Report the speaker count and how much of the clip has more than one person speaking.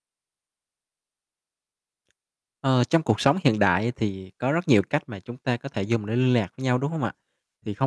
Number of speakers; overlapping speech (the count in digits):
1, no overlap